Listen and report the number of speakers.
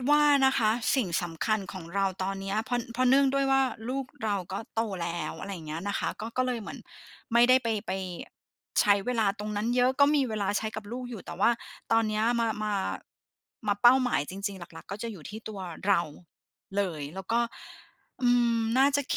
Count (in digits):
1